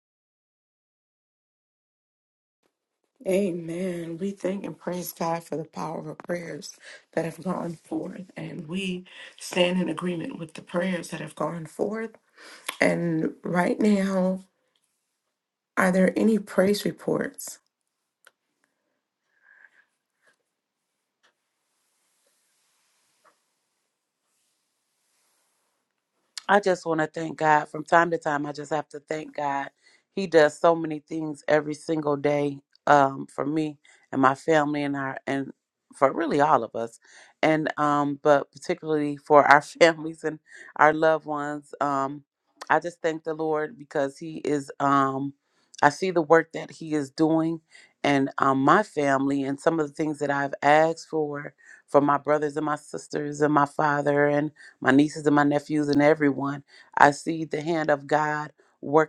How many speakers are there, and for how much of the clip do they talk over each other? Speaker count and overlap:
2, no overlap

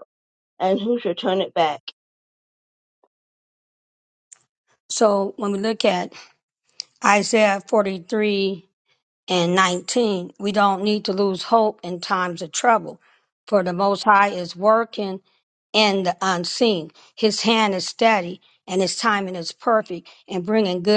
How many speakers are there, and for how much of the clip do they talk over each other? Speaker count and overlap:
2, no overlap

